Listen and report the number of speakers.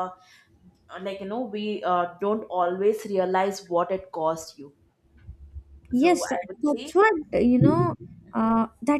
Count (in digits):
2